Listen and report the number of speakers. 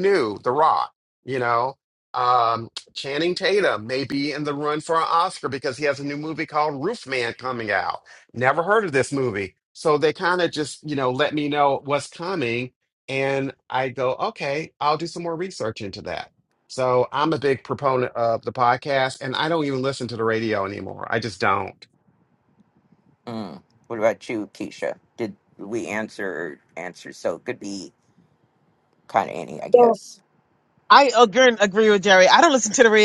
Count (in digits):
3